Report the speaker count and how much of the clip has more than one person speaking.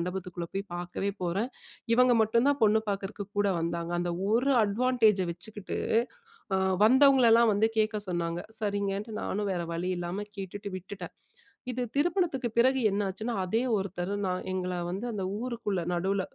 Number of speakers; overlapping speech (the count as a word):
one, no overlap